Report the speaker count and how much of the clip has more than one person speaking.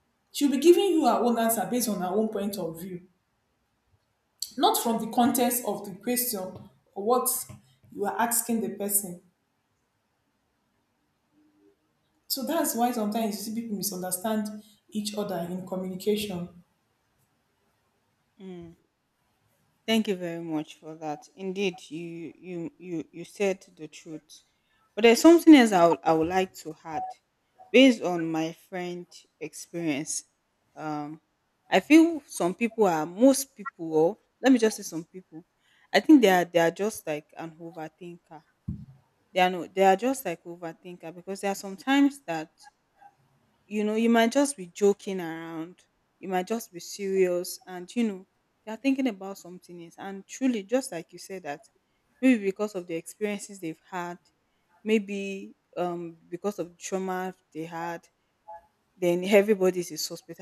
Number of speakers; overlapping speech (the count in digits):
2, no overlap